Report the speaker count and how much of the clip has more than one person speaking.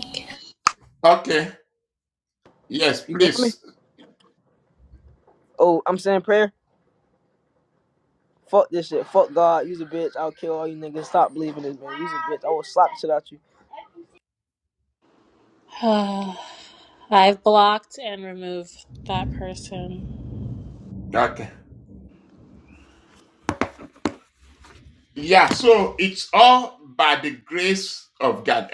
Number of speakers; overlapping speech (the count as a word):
three, about 1%